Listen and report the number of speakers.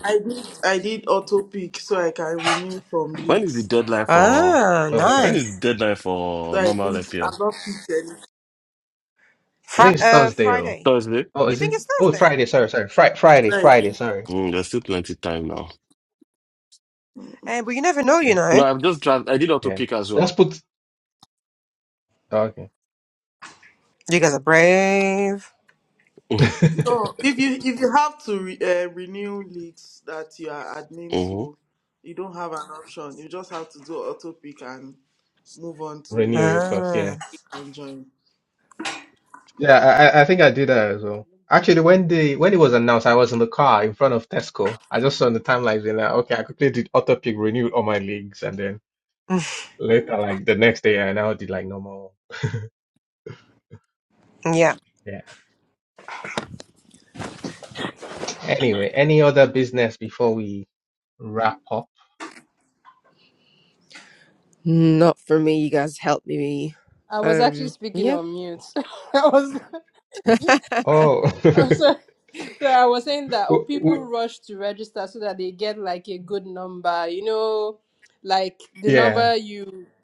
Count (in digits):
5